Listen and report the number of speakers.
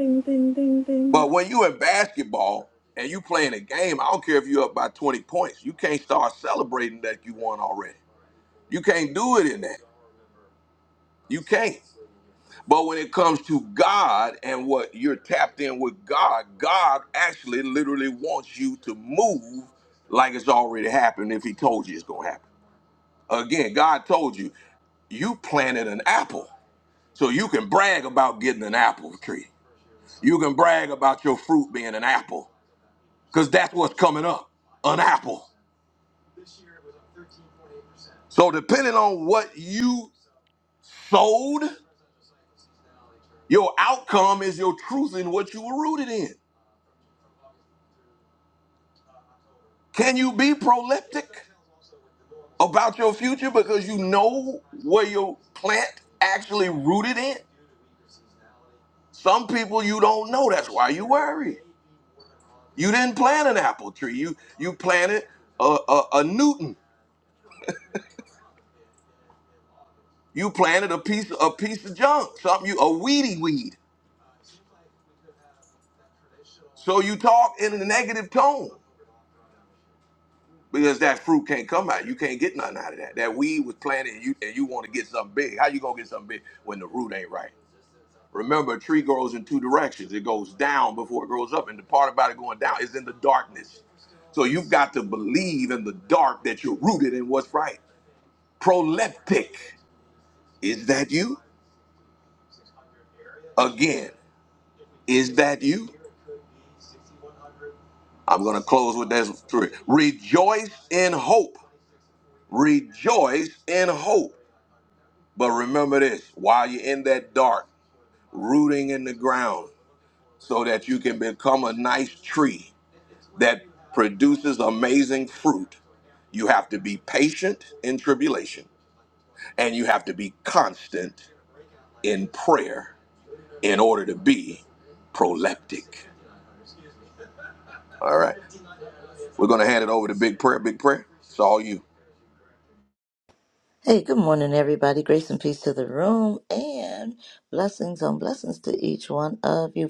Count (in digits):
3